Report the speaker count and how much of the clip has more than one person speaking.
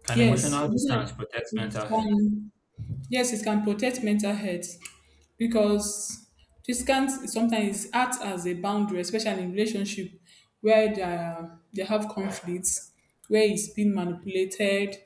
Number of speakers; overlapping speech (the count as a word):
two, about 10%